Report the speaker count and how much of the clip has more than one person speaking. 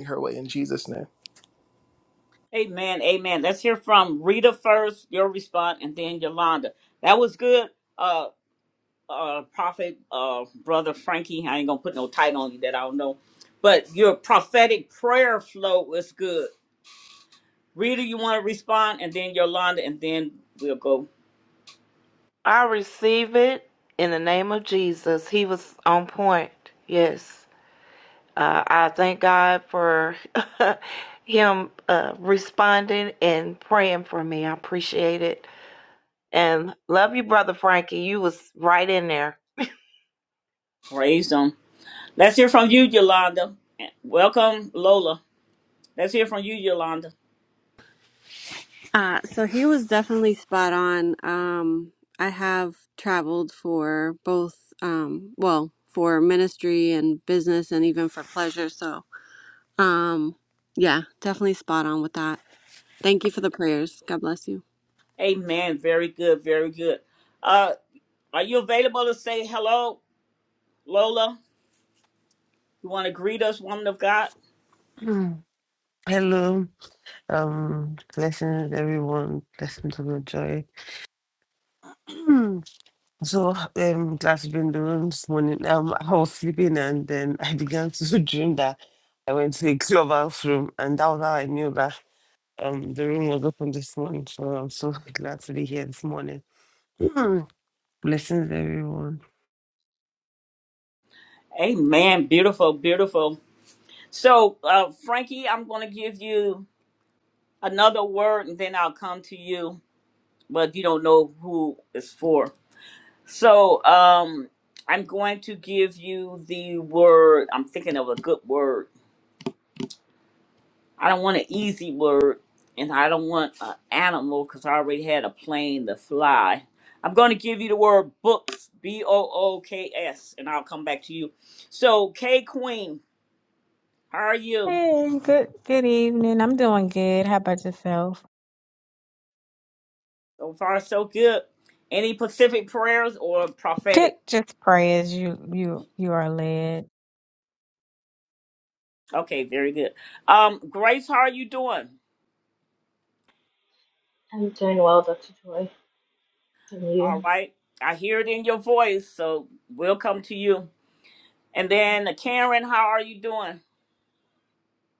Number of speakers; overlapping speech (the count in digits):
7, under 1%